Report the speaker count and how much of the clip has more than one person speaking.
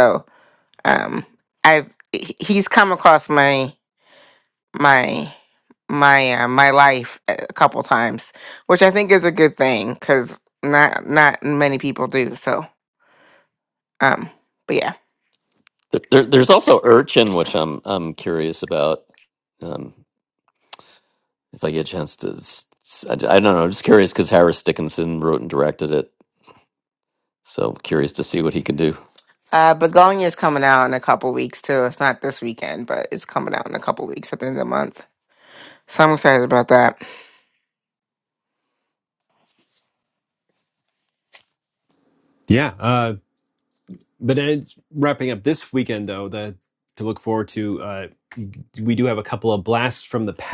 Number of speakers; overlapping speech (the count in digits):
3, no overlap